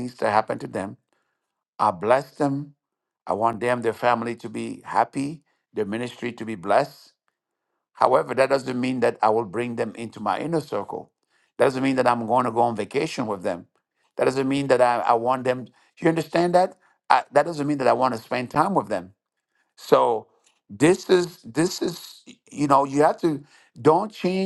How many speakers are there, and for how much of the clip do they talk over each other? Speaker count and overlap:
1, no overlap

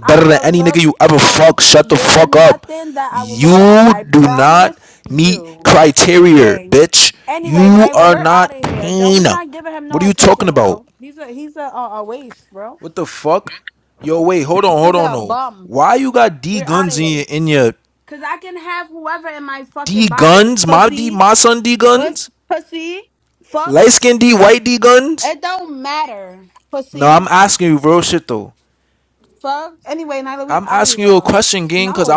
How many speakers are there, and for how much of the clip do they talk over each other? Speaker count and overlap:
2, about 35%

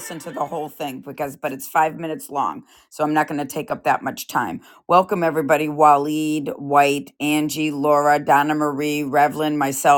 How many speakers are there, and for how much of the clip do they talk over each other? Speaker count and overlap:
1, no overlap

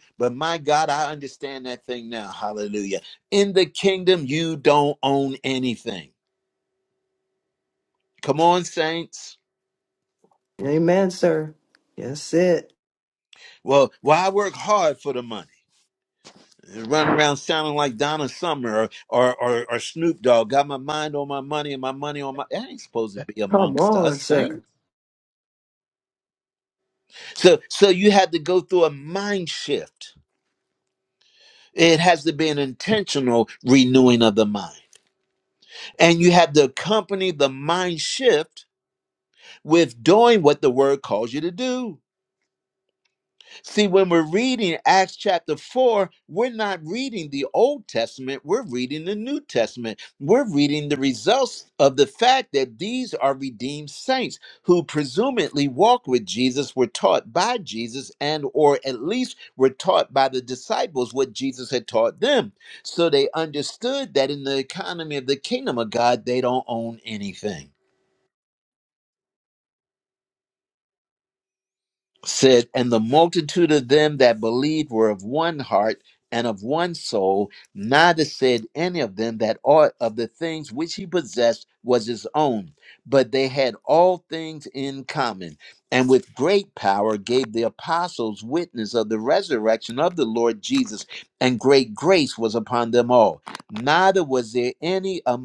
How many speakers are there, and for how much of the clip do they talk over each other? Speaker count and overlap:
2, about 1%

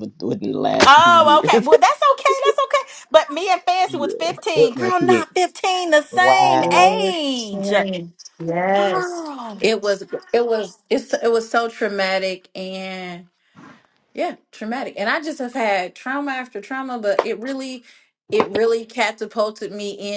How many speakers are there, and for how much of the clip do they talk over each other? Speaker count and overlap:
3, about 19%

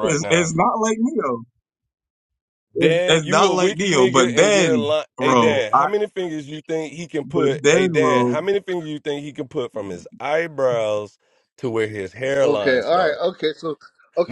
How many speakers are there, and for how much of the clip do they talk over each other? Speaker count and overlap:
3, about 36%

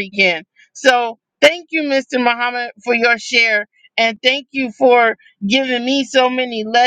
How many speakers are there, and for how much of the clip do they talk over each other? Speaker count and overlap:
1, no overlap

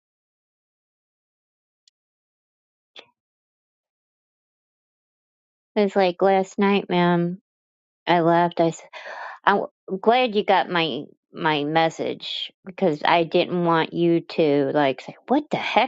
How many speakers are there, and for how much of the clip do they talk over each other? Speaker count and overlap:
1, no overlap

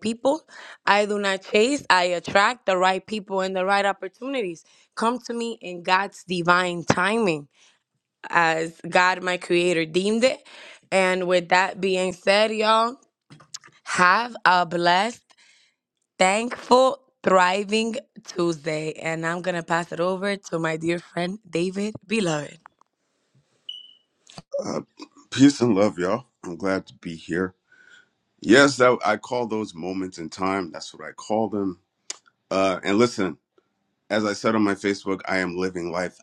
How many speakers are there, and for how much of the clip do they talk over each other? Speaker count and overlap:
2, no overlap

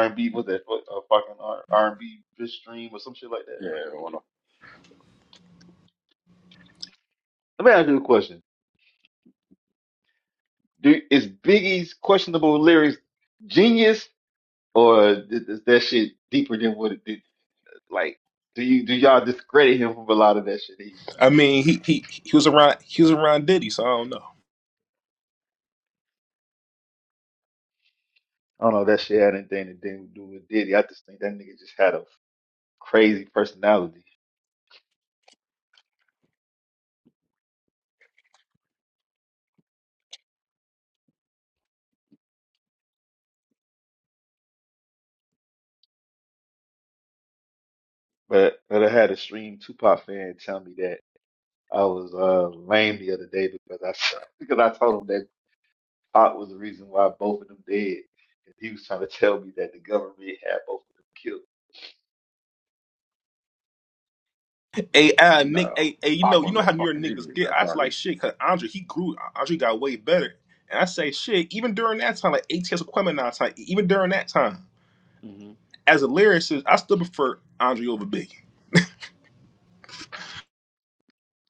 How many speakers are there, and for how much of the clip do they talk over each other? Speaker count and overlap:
3, about 3%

